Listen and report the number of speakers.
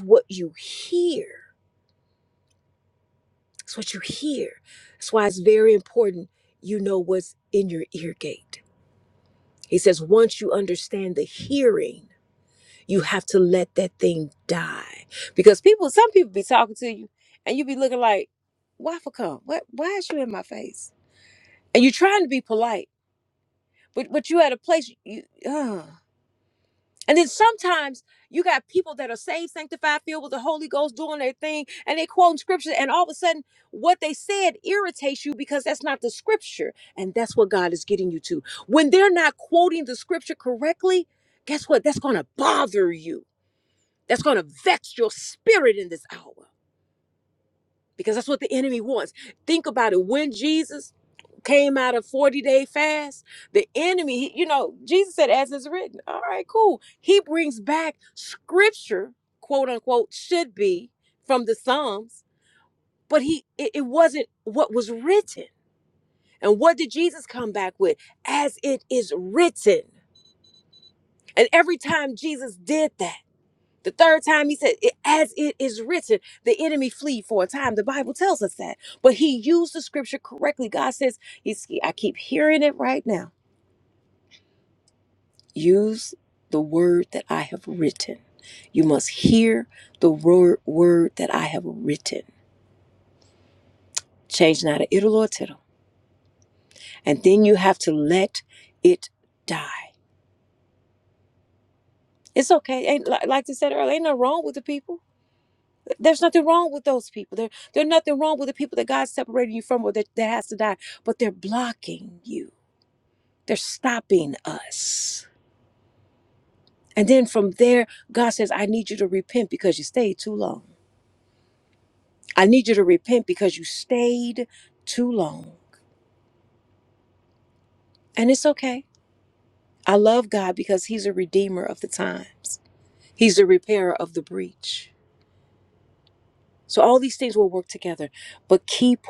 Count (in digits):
1